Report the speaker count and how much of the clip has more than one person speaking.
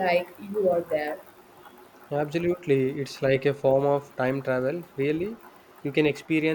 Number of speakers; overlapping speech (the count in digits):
2, no overlap